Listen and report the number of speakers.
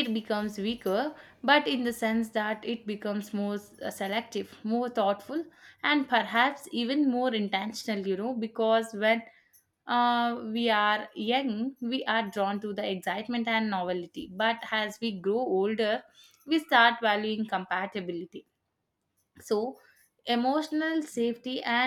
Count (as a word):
one